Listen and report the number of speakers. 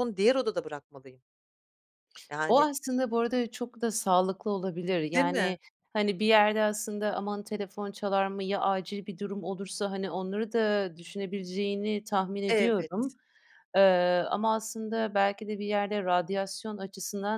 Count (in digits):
2